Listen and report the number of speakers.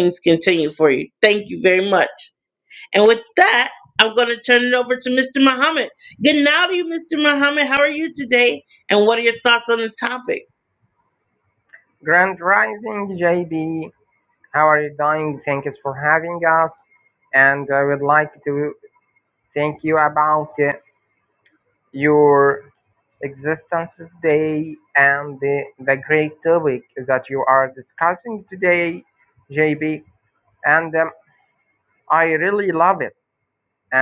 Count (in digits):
2